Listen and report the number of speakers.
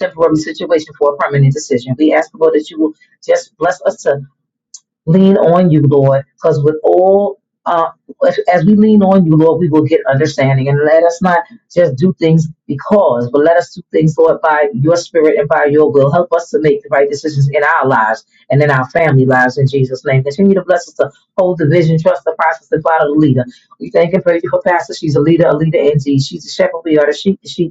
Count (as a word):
one